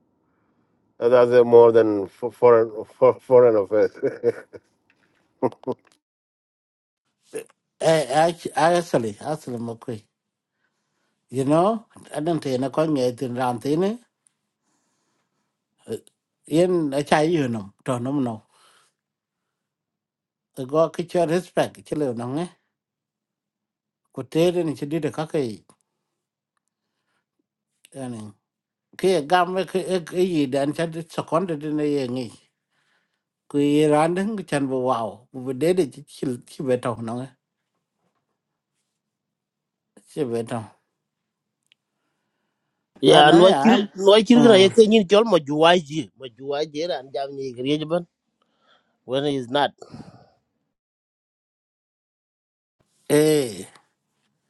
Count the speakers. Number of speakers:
3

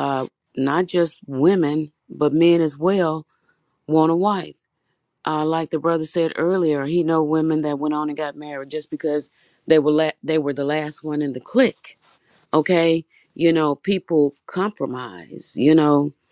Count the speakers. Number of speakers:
1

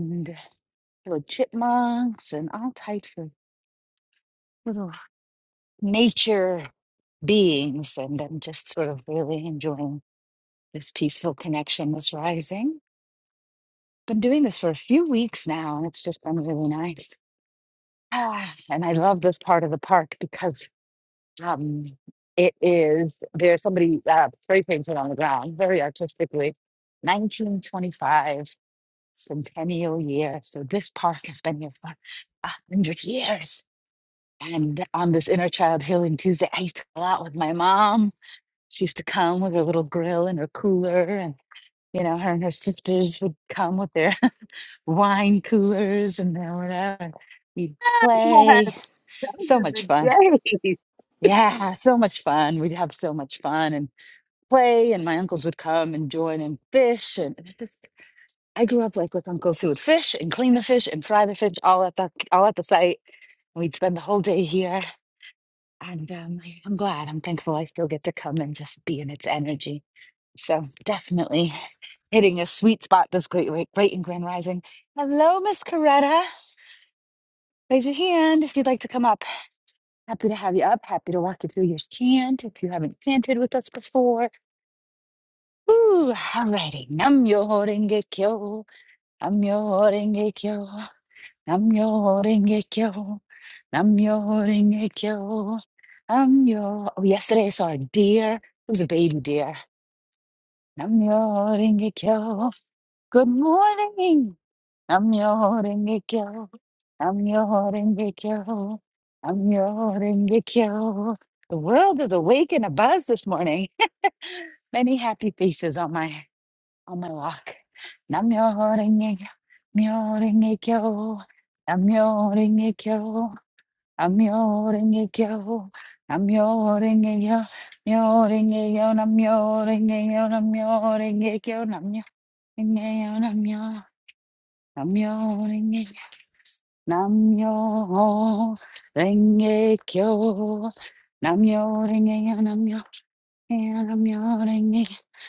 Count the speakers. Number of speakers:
2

